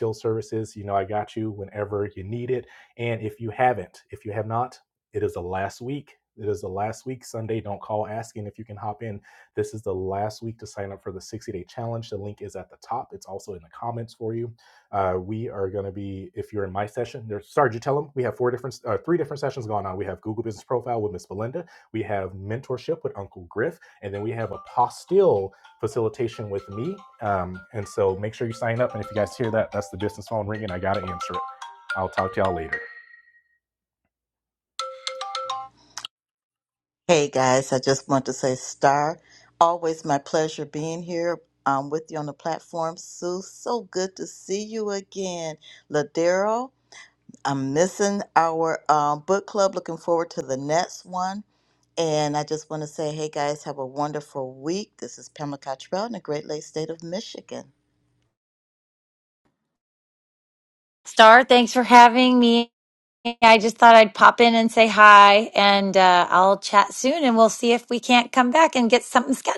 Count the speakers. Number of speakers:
3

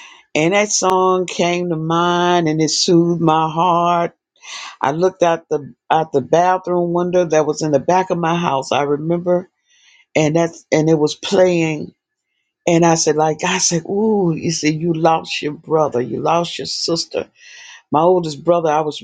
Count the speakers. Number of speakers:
1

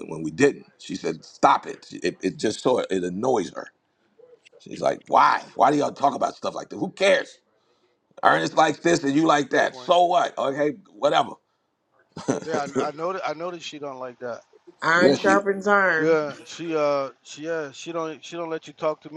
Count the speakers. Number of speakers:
3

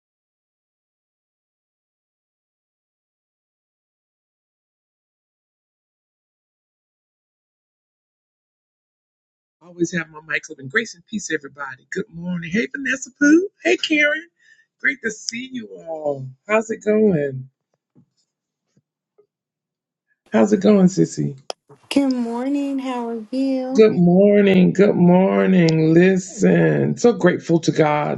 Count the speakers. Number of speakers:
2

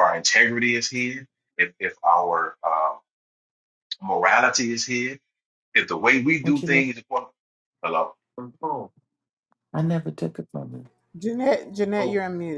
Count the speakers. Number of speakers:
3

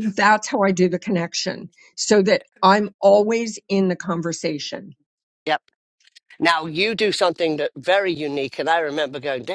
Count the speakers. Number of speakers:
2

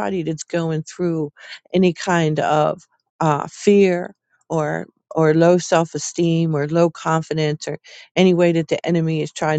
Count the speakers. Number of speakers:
1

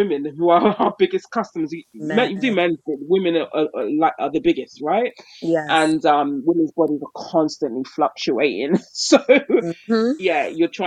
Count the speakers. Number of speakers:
2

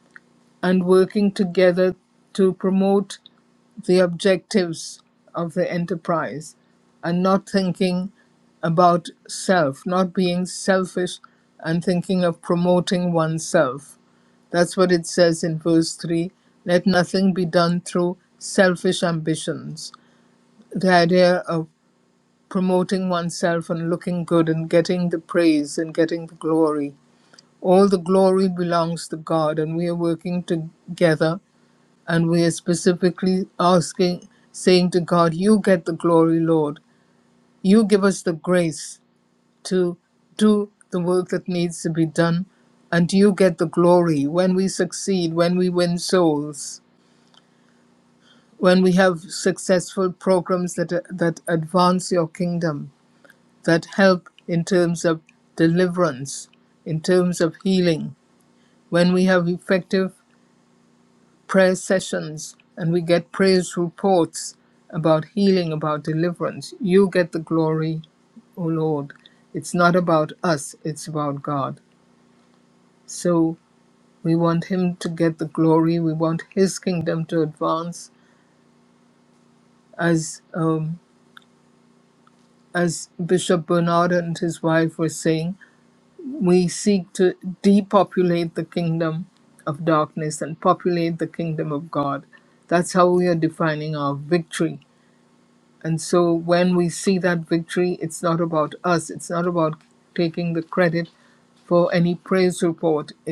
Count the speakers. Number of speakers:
1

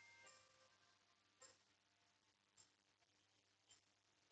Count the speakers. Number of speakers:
0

